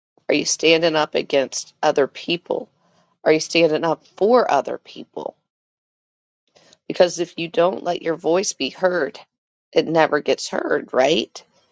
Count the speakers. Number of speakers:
1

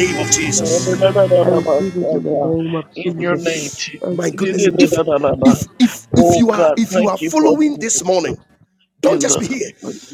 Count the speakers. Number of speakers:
3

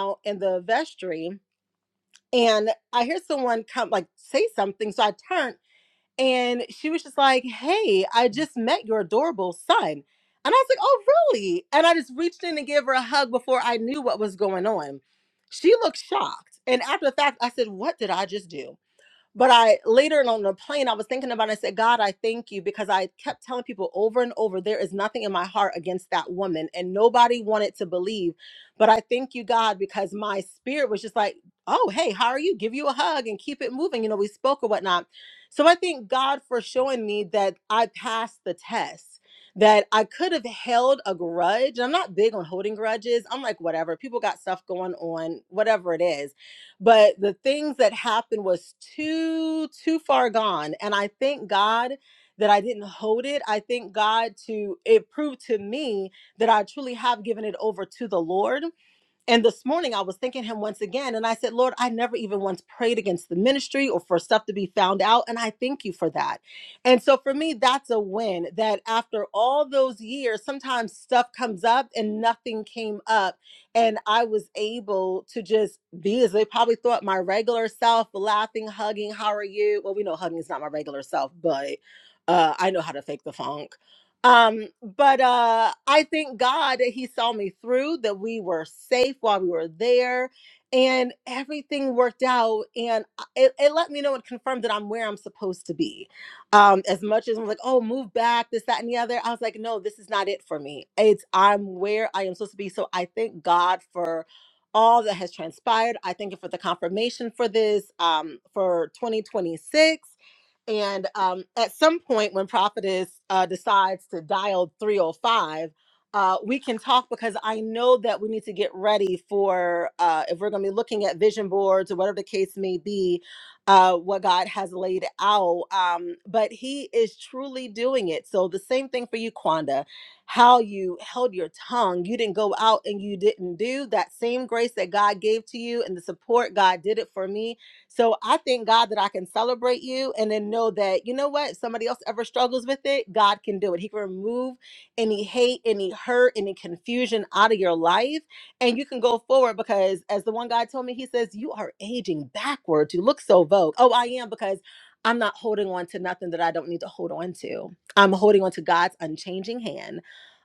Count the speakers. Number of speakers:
1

